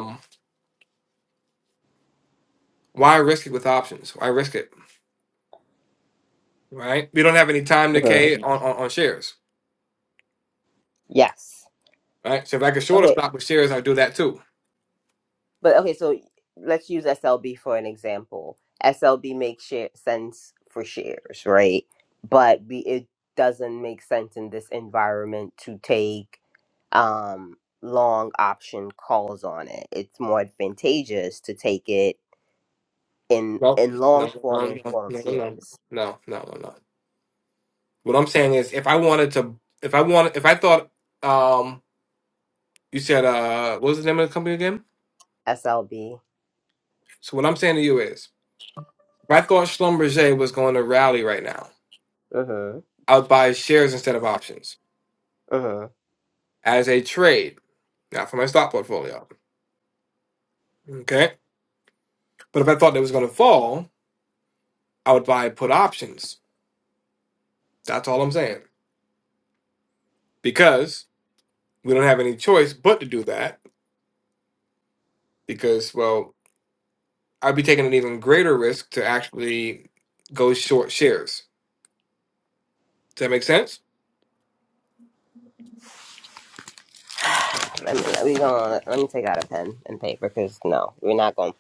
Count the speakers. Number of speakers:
2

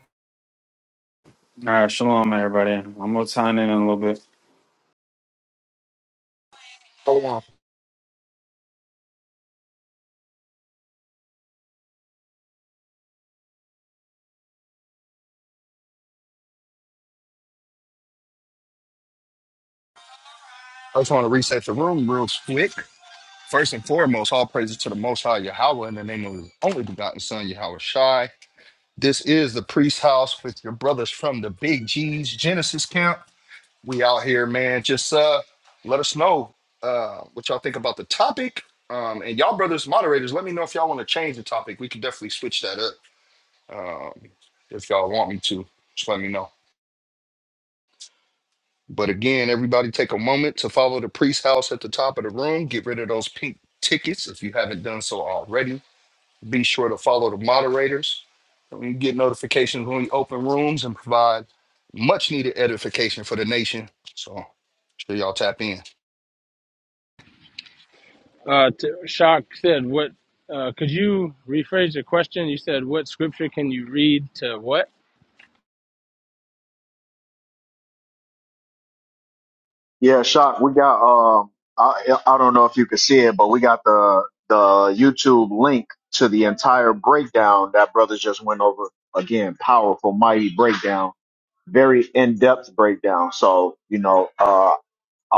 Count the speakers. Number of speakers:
4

